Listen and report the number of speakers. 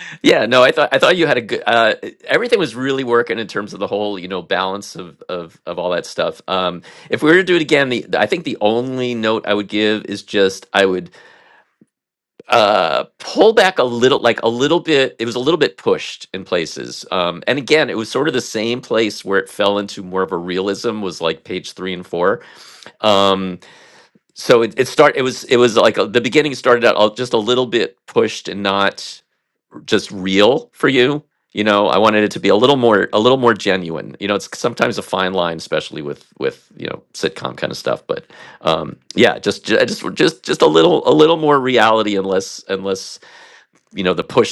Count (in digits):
1